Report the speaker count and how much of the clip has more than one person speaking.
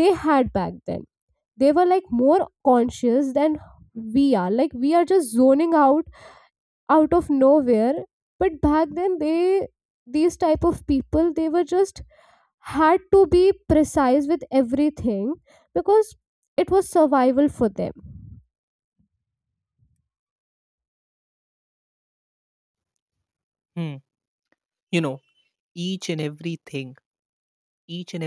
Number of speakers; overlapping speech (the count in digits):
2, no overlap